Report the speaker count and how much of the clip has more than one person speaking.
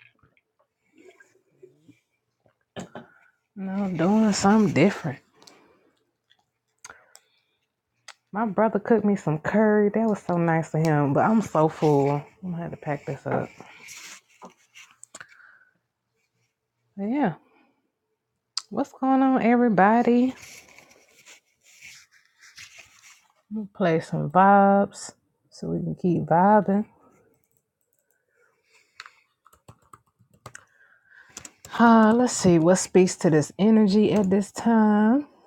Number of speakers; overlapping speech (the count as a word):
one, no overlap